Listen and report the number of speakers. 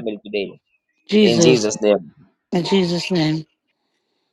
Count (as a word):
two